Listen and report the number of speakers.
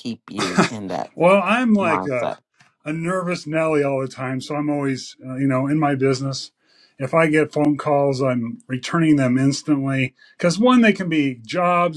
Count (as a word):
two